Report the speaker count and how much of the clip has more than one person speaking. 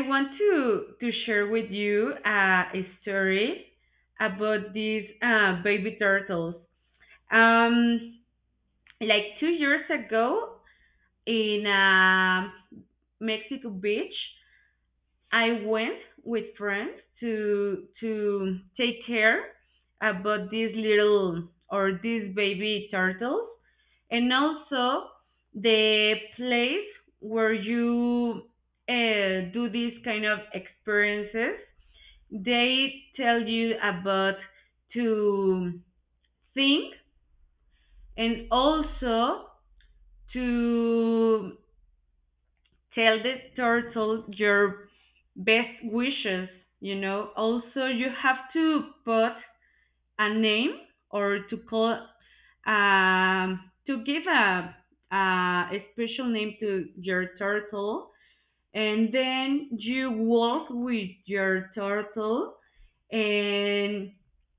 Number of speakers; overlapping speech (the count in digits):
1, no overlap